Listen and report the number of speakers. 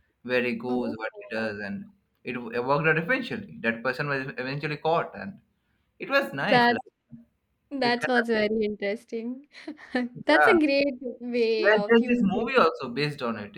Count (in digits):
2